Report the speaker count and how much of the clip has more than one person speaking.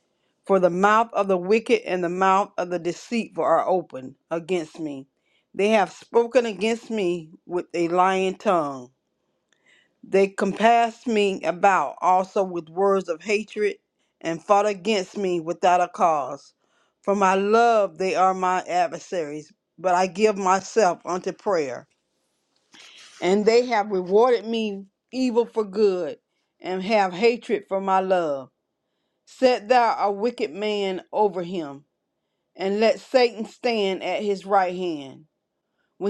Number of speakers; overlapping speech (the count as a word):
one, no overlap